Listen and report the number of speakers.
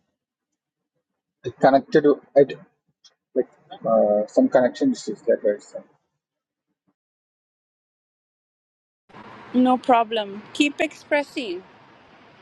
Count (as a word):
two